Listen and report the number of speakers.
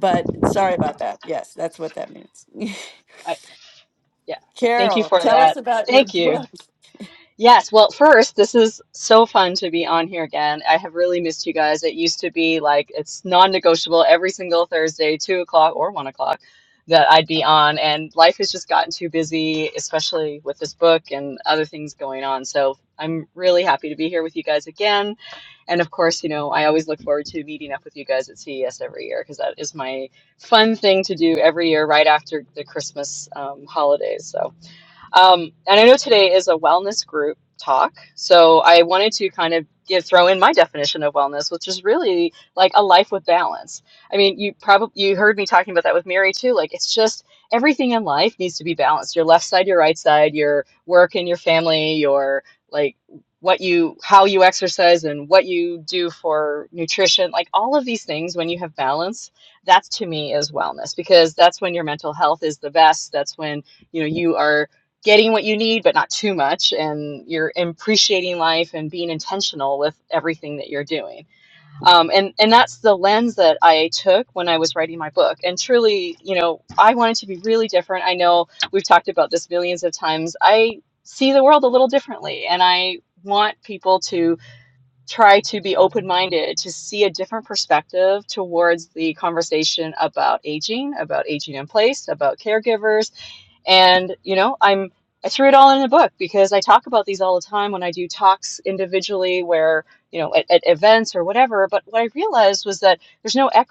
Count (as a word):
two